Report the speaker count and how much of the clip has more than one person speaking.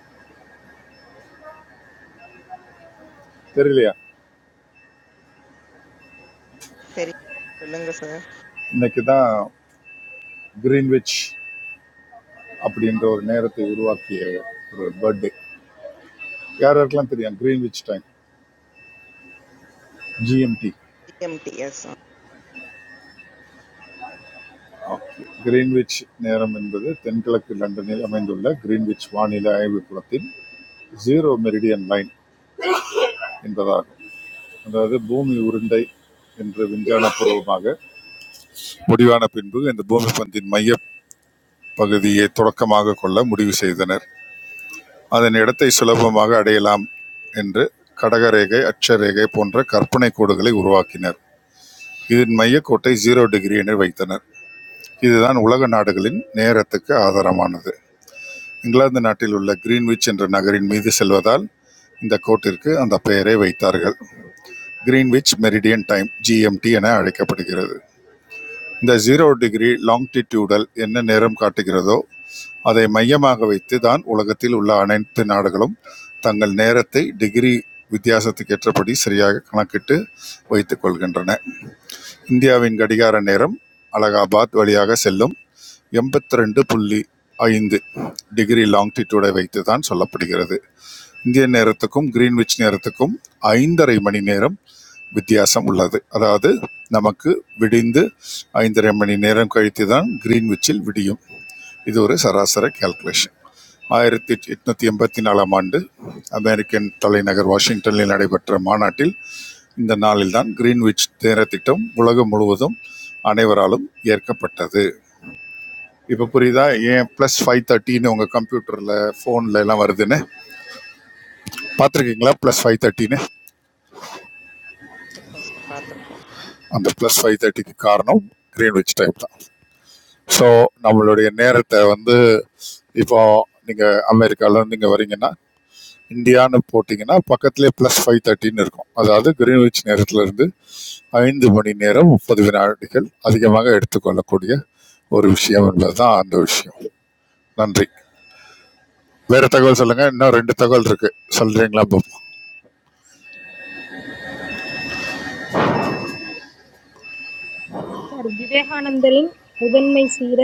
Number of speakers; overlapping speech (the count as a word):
three, no overlap